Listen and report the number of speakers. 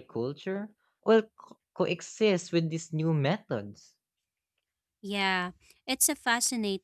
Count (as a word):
two